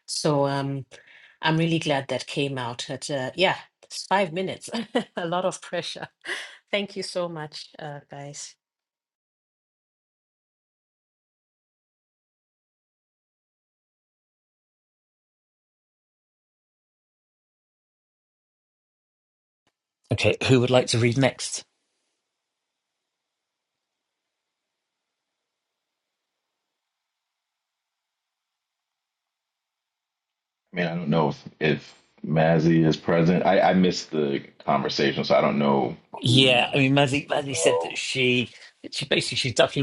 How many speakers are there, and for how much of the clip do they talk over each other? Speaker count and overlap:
3, about 3%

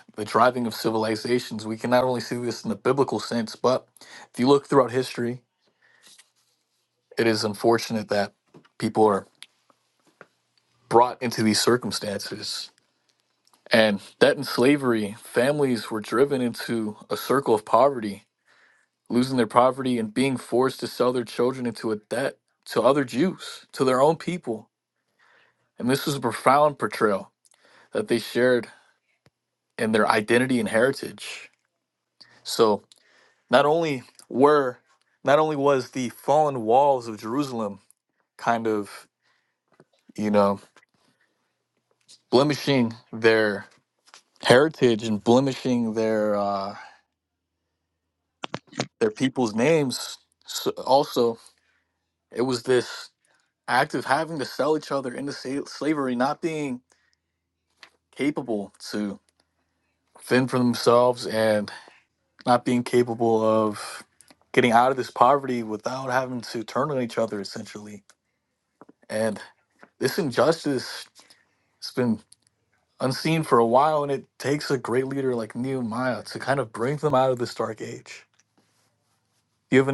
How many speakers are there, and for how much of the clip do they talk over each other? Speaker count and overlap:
1, no overlap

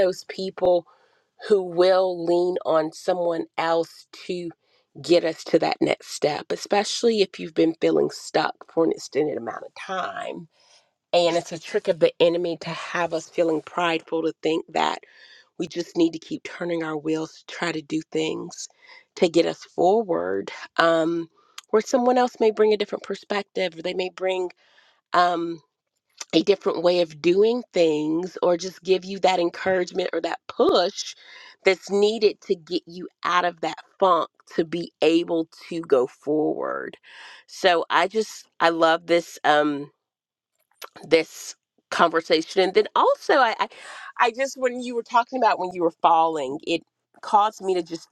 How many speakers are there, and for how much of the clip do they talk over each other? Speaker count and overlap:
1, no overlap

